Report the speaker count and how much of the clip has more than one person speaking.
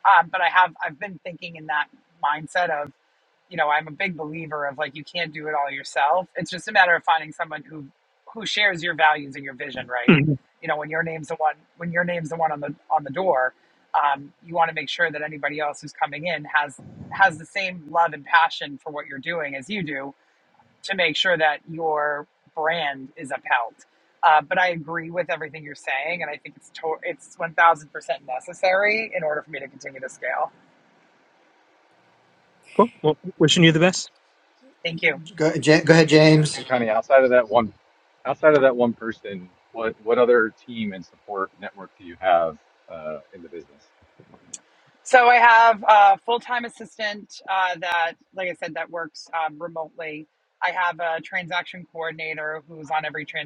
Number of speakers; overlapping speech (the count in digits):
4, under 1%